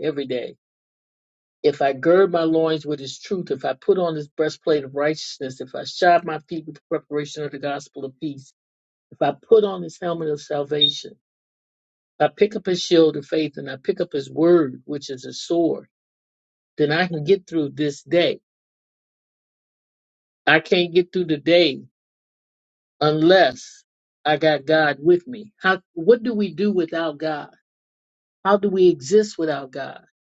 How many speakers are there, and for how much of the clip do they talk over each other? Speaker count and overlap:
one, no overlap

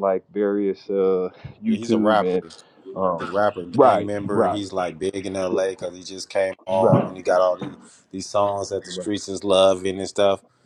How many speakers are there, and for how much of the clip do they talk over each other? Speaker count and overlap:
two, about 22%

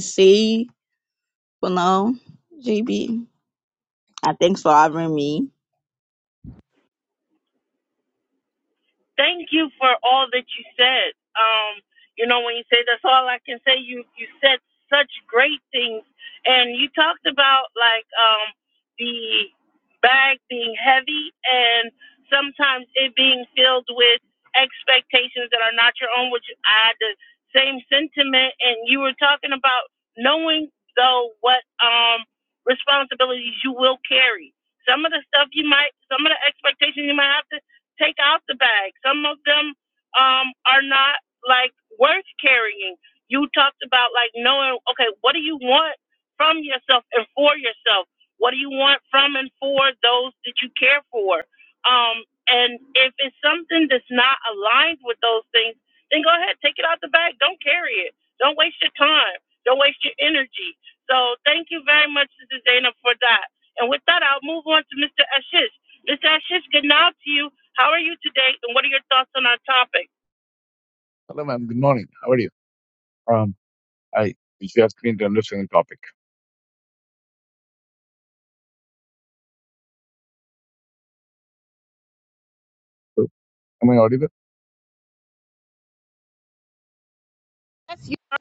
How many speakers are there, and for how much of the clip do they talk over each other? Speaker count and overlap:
three, no overlap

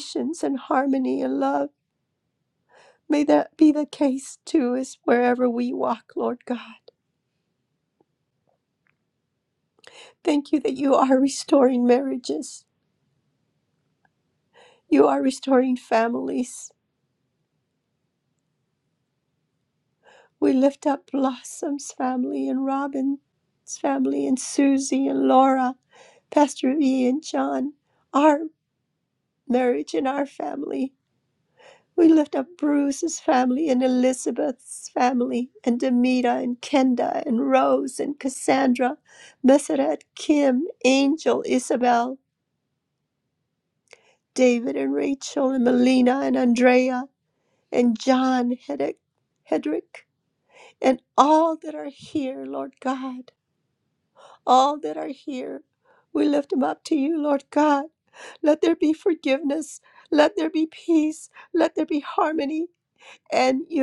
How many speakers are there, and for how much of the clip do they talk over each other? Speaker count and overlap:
one, no overlap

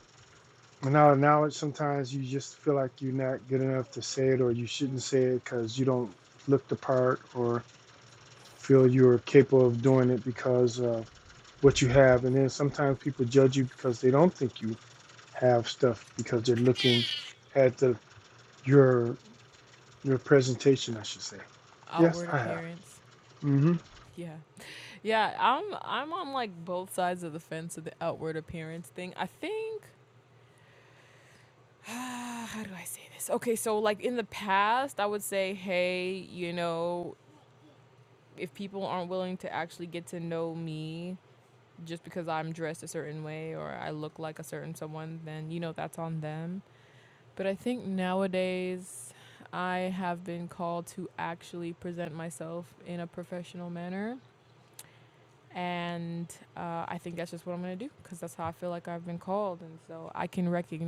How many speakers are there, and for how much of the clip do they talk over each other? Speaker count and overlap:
two, about 1%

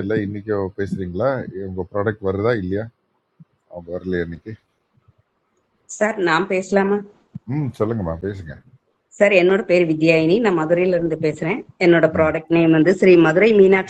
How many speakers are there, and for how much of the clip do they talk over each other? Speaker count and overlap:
two, about 1%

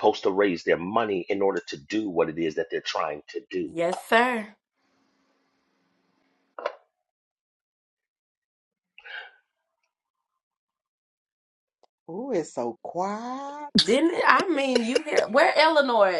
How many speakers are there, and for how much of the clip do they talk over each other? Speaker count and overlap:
three, under 1%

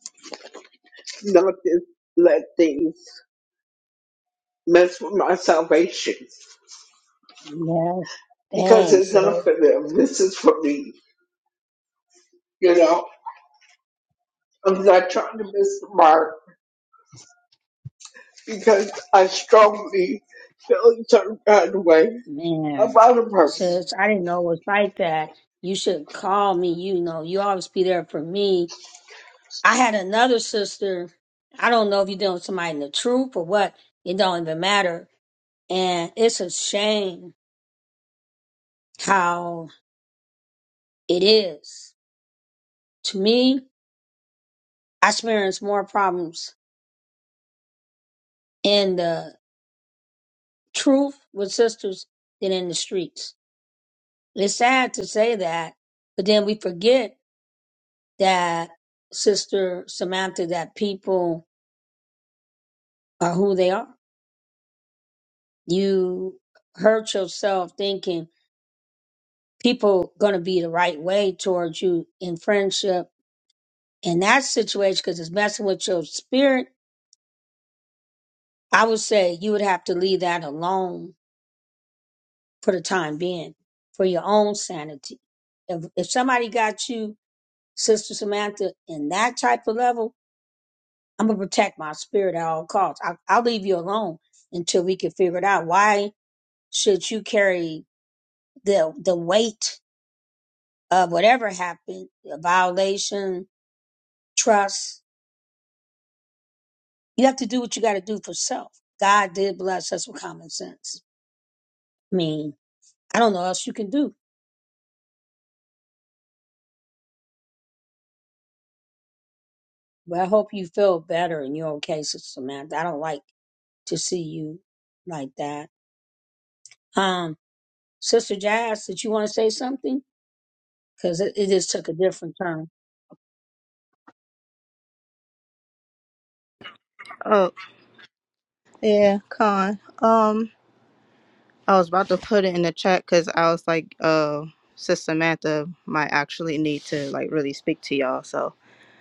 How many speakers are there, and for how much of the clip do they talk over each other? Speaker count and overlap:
three, about 1%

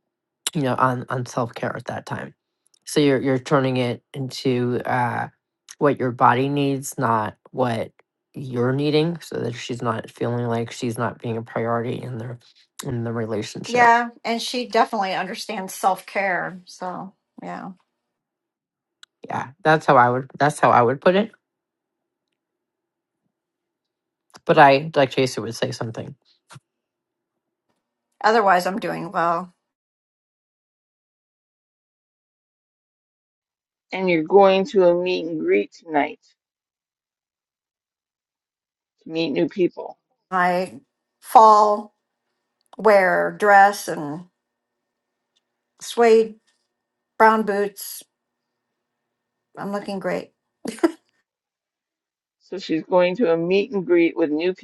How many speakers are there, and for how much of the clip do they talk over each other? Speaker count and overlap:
three, under 1%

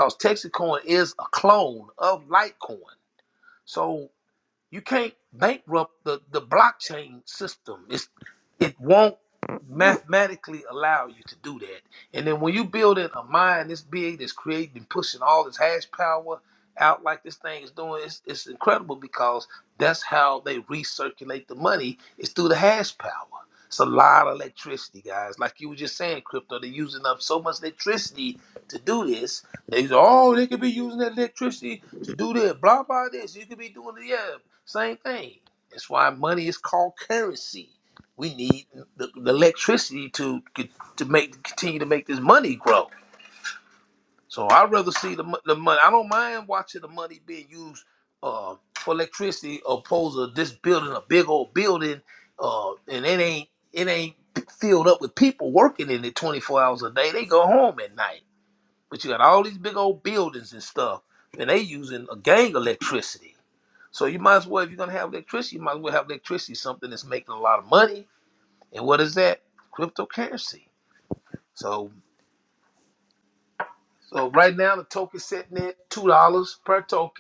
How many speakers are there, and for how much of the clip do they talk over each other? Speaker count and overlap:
one, no overlap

